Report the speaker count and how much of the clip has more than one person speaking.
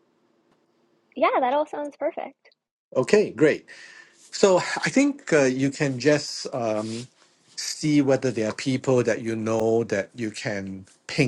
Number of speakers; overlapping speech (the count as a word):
two, no overlap